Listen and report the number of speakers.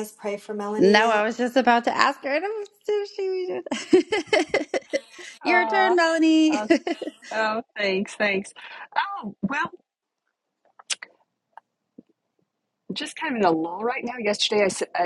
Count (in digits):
3